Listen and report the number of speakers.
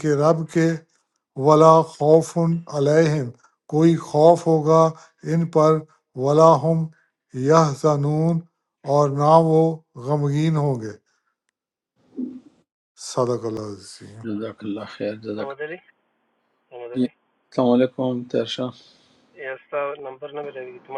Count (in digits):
3